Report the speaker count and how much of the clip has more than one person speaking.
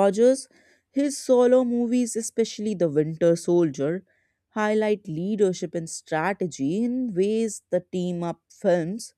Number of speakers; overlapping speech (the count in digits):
1, no overlap